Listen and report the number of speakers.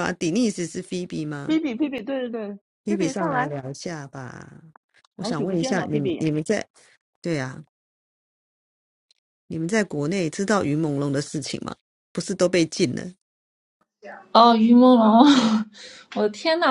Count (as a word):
three